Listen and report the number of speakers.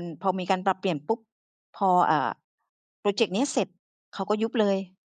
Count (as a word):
one